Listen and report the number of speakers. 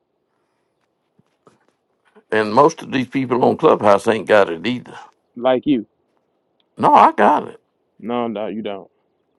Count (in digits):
2